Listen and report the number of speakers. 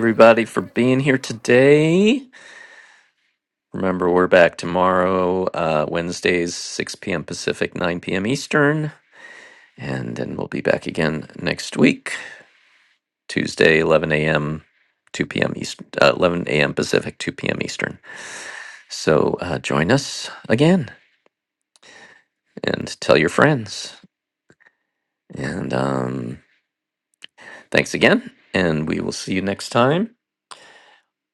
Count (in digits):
1